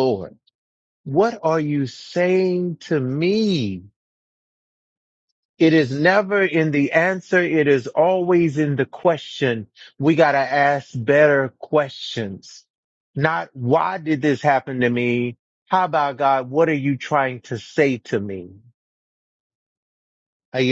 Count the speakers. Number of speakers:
one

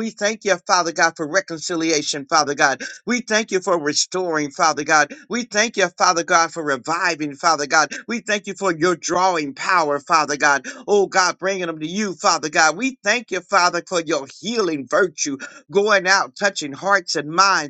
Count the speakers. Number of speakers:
one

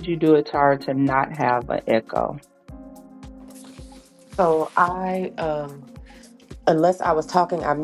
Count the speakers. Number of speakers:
two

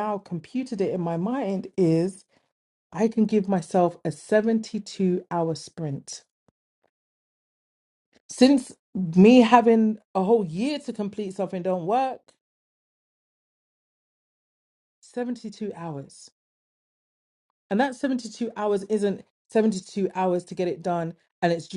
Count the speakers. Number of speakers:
one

